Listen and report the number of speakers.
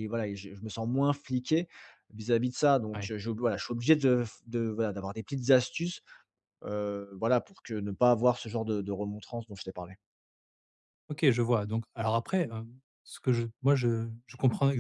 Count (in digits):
2